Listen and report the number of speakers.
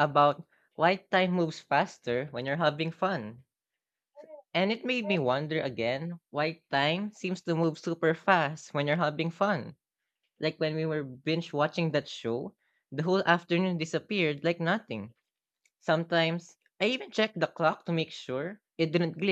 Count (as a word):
one